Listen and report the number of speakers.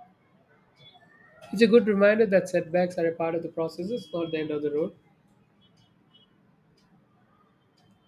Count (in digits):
1